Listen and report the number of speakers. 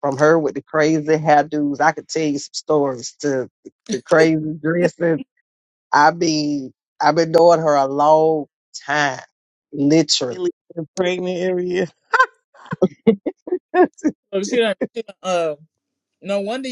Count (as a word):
three